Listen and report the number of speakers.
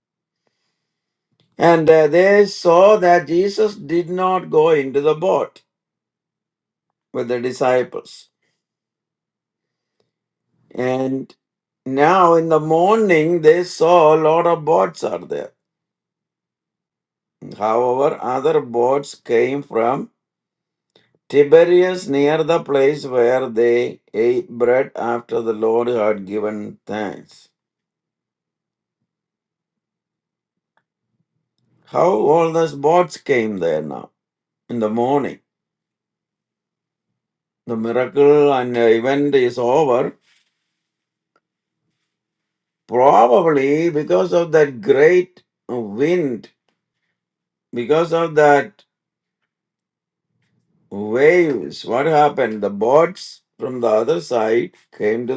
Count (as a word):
one